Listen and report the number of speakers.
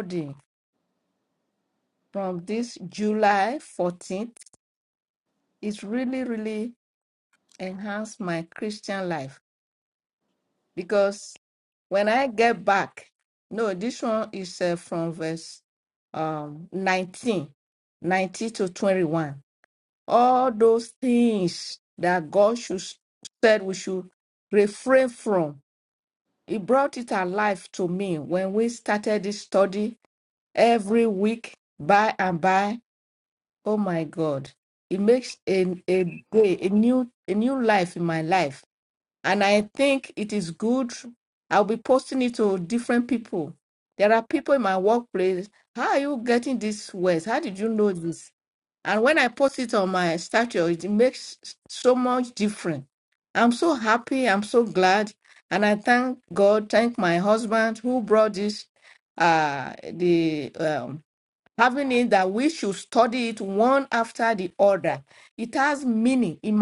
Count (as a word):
one